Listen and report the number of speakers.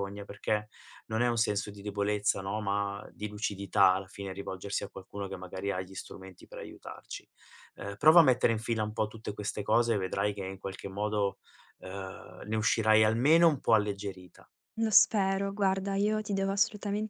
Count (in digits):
2